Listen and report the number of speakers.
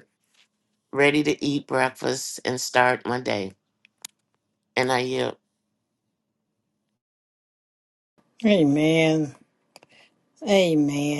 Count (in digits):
2